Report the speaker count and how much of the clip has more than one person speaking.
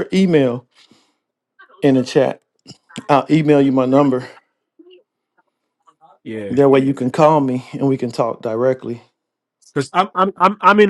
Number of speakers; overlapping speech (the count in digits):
2, about 1%